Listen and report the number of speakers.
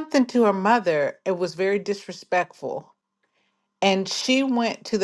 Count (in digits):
1